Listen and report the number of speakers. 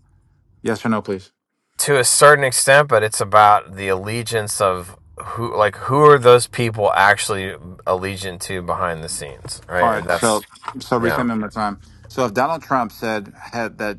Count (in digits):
2